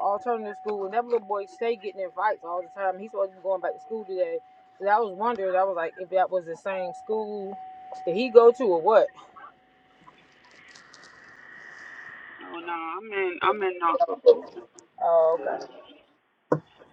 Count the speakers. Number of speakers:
2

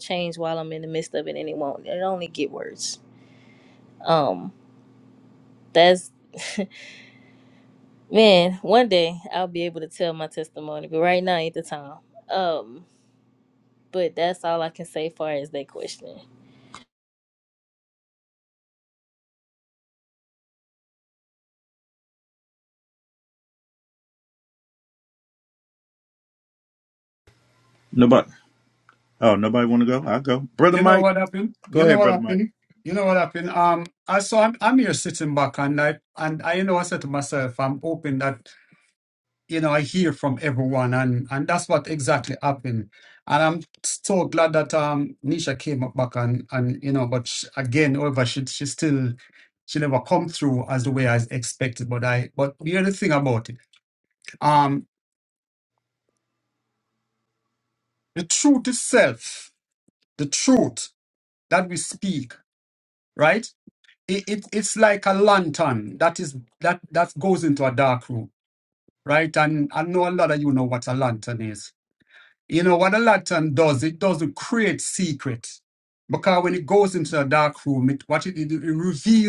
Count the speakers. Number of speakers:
3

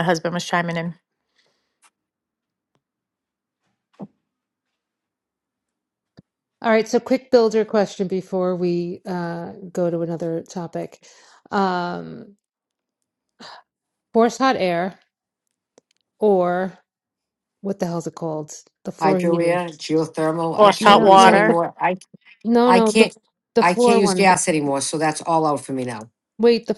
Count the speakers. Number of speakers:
3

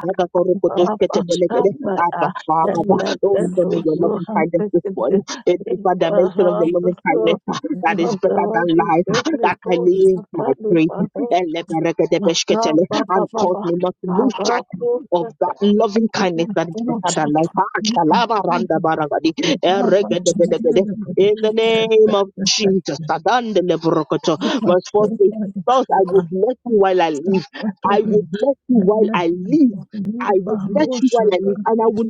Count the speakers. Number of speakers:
2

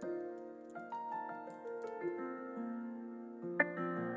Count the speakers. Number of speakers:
0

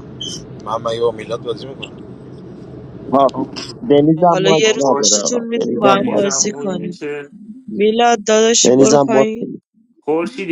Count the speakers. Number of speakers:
4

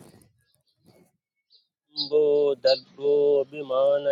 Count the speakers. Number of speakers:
1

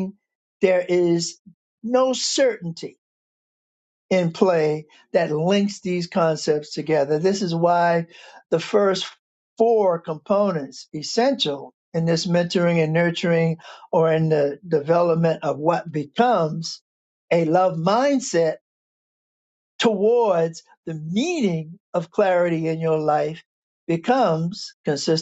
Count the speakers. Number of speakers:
1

